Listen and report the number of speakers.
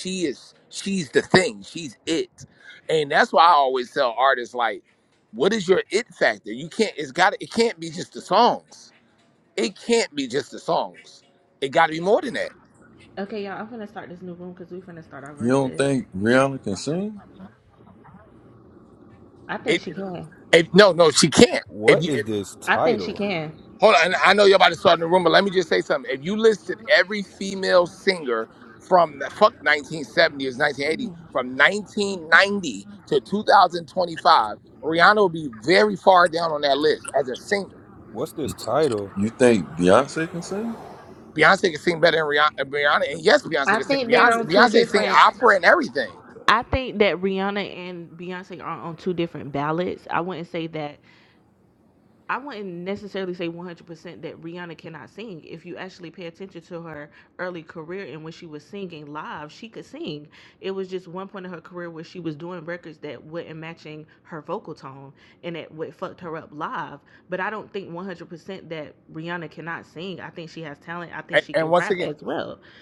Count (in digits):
4